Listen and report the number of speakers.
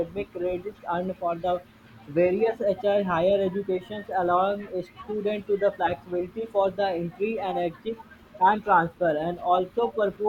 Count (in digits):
1